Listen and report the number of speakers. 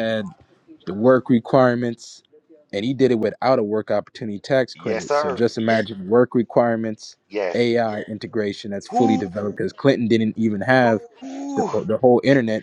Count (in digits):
2